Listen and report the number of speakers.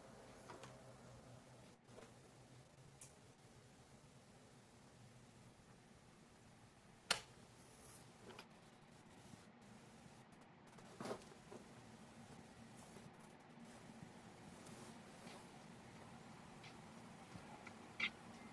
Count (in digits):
0